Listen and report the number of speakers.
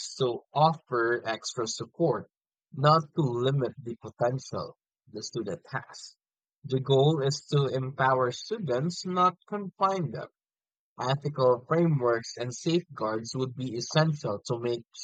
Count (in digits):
1